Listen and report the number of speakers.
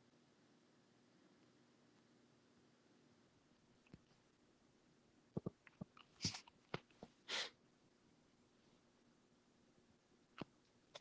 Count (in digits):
0